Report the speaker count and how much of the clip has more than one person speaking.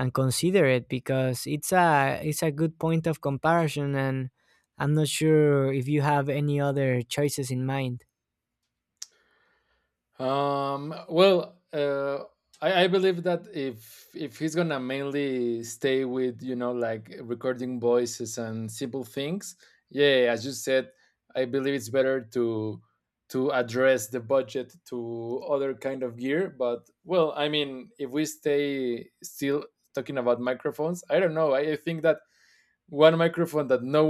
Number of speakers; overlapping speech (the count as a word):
two, no overlap